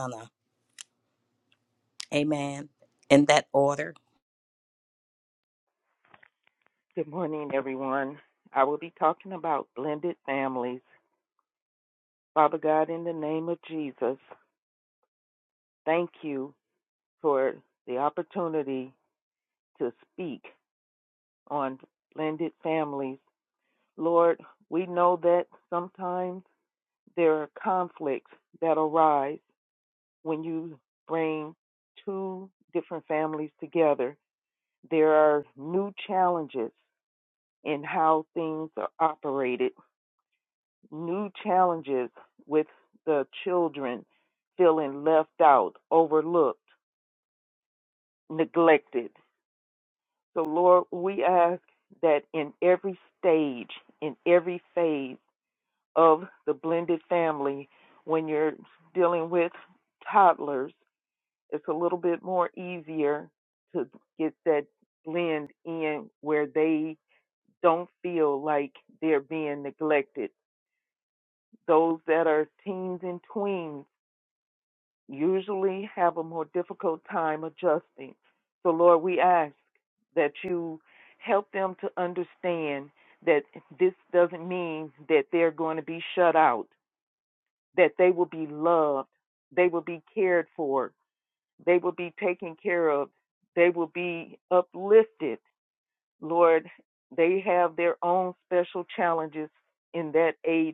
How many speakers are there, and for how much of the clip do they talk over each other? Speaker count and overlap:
2, no overlap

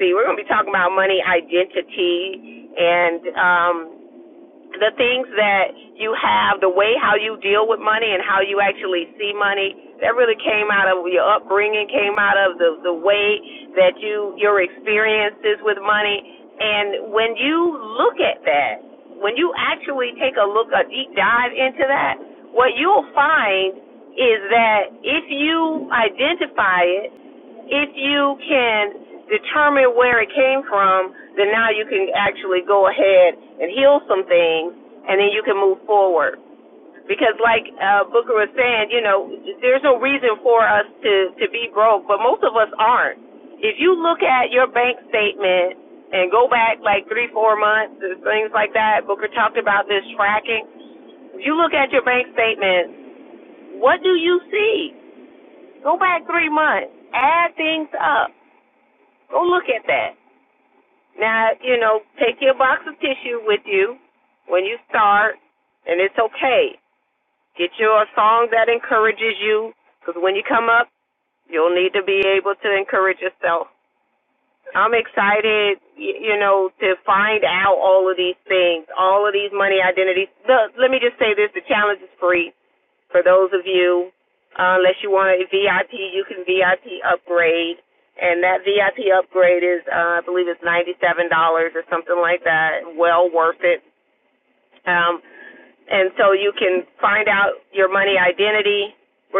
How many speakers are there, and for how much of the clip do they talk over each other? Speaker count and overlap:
1, no overlap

